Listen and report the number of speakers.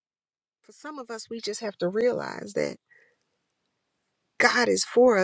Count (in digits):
1